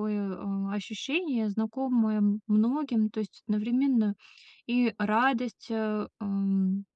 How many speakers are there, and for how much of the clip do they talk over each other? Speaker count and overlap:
1, no overlap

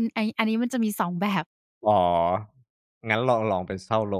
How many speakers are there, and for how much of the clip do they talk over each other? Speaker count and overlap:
2, no overlap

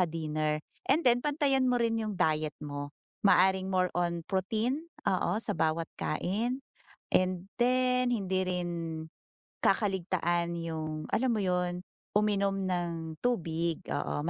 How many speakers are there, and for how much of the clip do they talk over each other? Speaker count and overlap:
1, no overlap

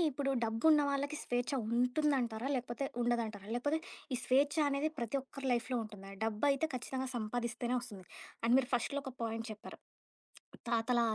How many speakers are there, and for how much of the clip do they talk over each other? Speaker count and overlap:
1, no overlap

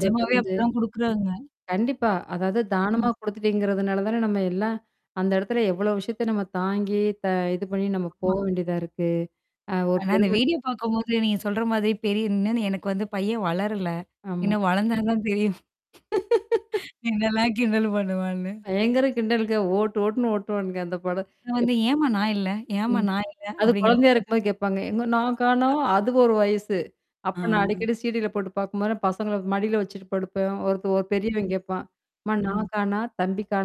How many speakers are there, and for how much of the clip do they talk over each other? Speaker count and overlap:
2, about 7%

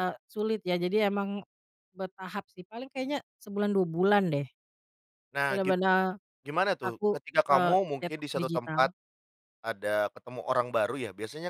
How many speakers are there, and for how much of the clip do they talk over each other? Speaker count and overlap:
2, about 17%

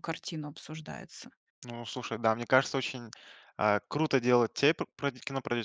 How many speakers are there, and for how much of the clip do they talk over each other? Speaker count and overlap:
2, no overlap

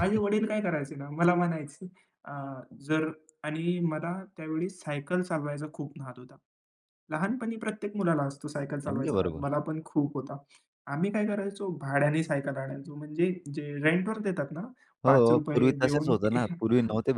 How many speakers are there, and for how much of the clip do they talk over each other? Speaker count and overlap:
2, about 10%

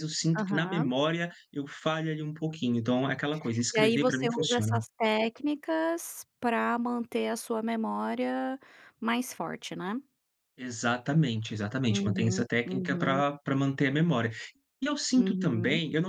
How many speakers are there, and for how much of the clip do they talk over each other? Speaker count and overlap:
2, about 22%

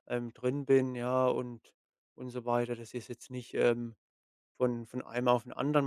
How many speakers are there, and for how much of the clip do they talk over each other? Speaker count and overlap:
1, no overlap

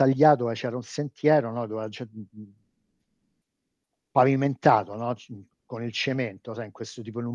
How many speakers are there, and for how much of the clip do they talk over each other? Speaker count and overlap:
1, no overlap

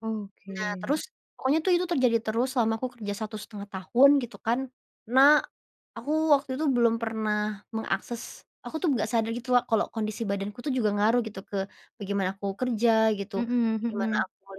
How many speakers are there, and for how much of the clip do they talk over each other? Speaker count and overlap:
2, about 5%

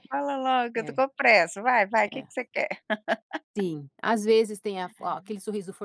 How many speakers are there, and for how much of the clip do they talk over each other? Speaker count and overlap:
2, about 6%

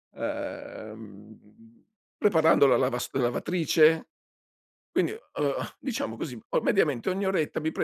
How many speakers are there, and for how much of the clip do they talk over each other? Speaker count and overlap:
1, no overlap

